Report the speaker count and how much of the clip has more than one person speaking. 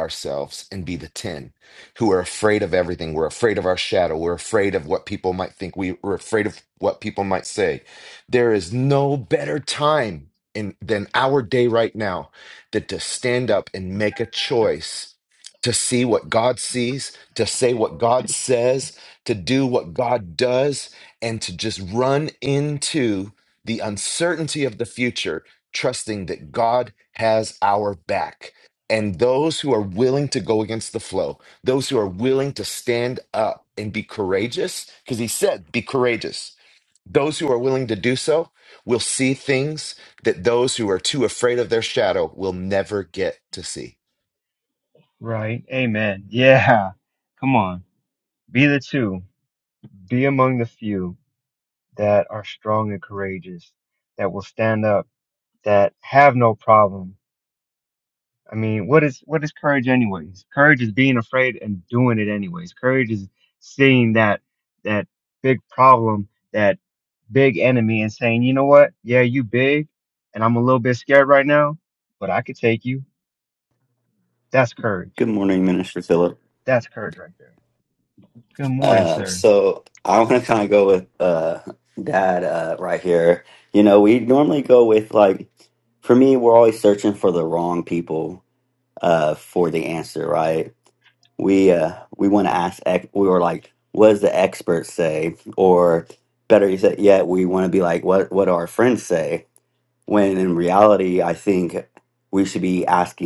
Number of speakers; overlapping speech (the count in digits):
3, about 1%